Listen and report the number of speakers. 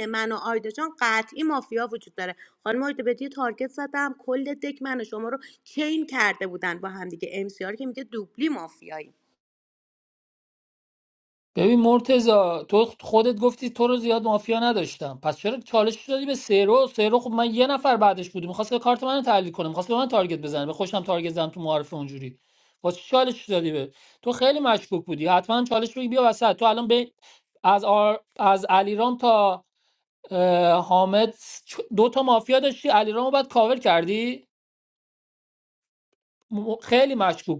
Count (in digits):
2